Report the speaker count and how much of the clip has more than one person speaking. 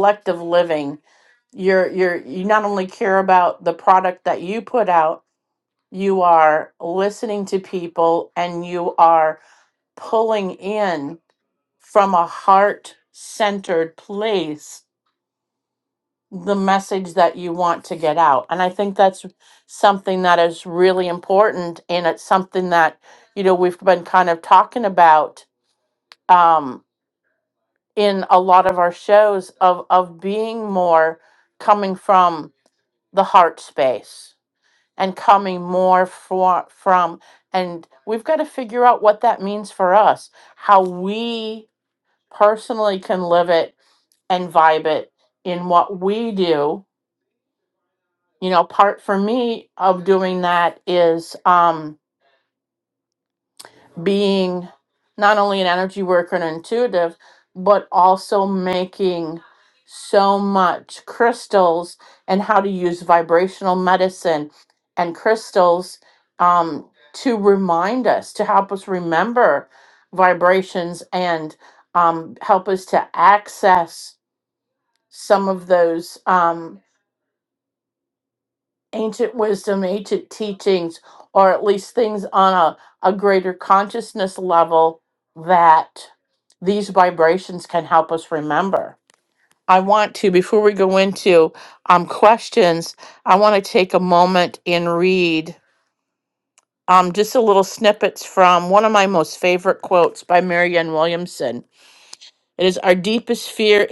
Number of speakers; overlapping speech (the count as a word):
one, no overlap